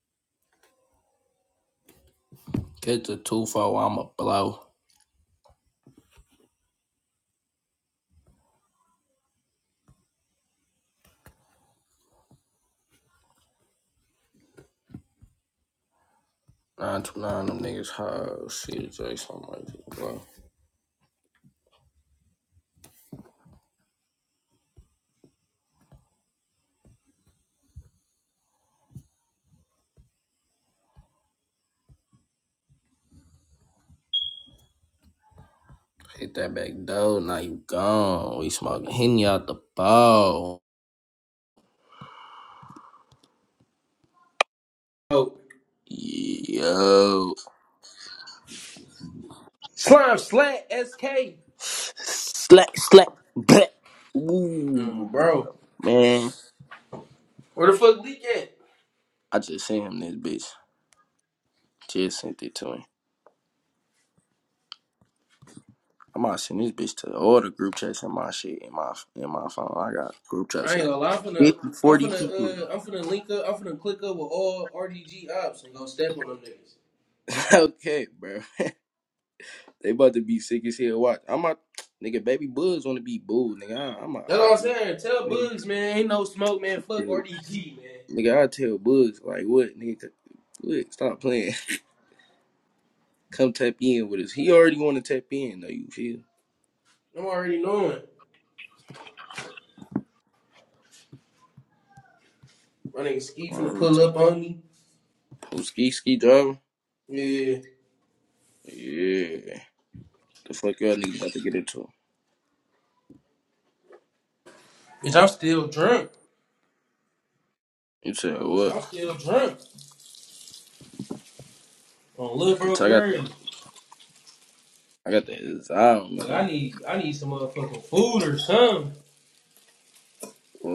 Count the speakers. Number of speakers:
2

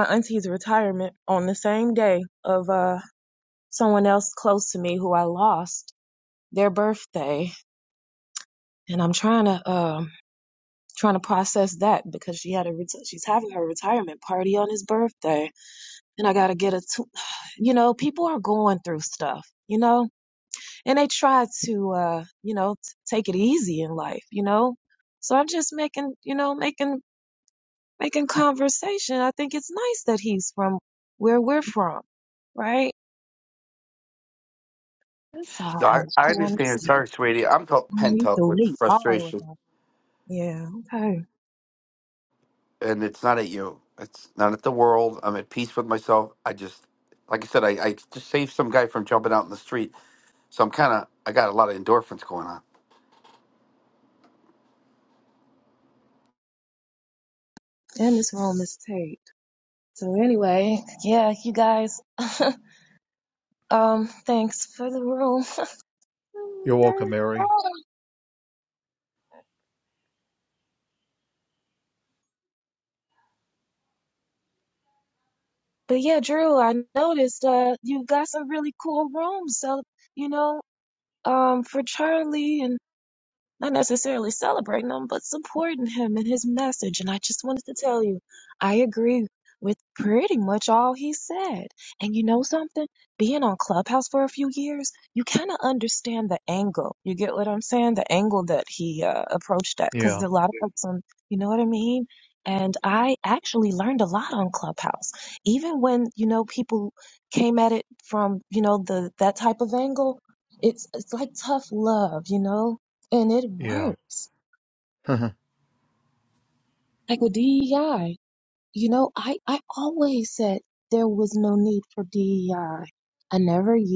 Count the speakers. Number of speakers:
3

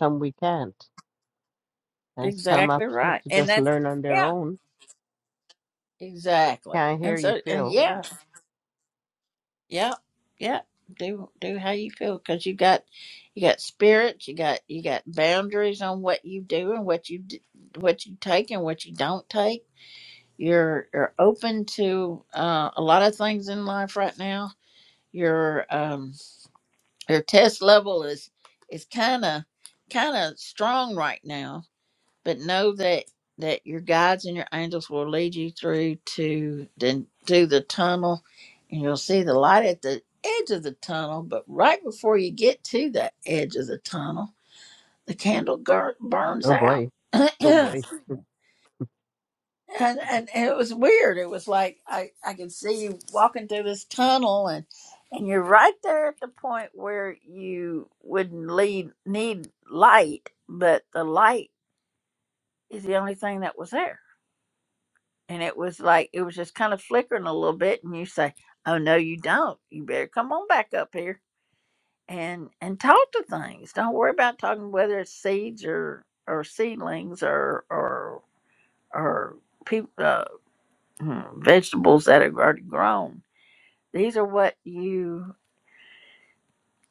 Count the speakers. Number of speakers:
2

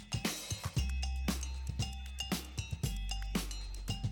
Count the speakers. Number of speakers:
0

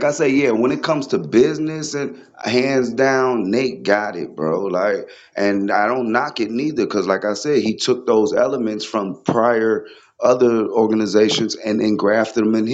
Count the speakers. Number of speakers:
1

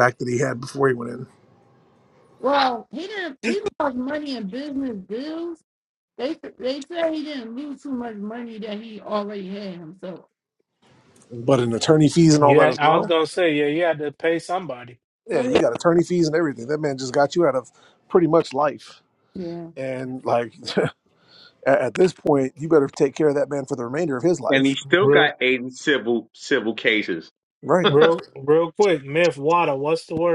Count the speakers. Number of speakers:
4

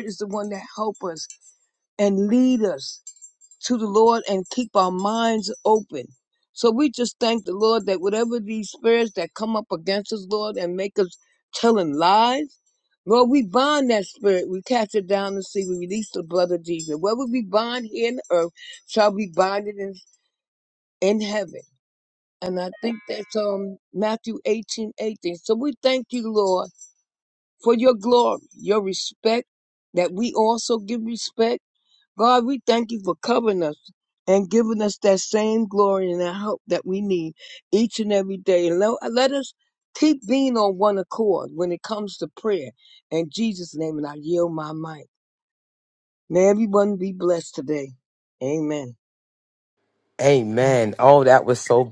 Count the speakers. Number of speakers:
2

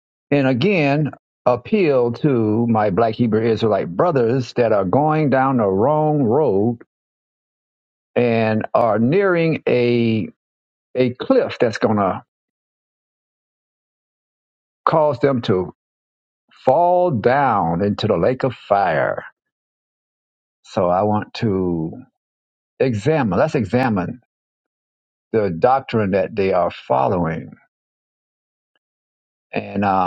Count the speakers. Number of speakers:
1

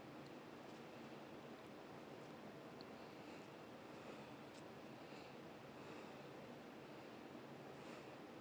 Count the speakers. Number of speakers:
0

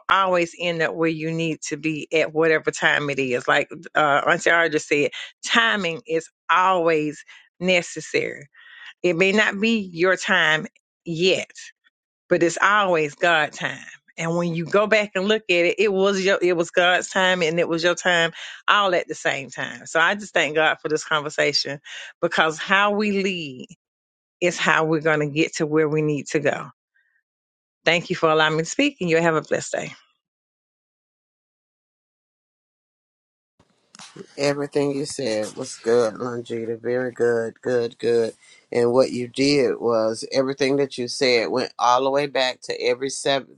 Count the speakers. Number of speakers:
2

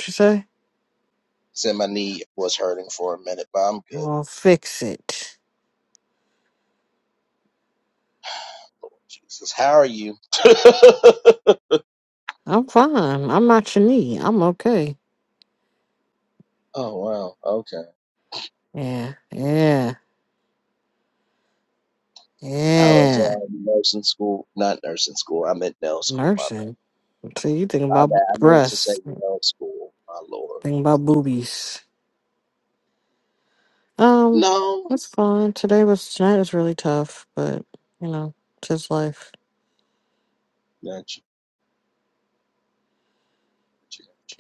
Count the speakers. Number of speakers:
2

